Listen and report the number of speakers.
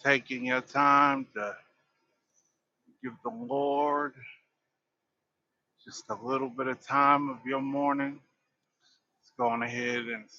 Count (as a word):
one